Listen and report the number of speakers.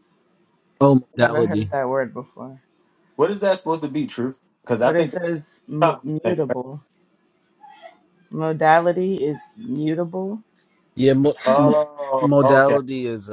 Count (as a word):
three